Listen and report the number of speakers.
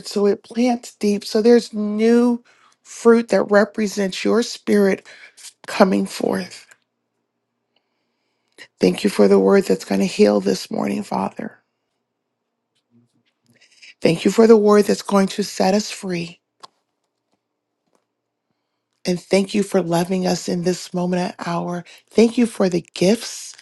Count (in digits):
1